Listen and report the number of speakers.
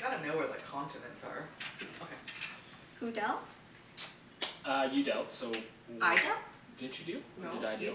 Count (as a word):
three